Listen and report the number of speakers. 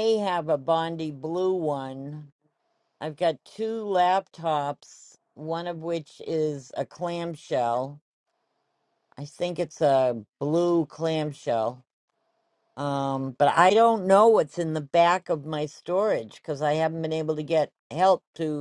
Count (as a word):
one